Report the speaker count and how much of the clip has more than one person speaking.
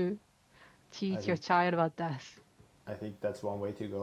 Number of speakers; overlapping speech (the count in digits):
2, about 7%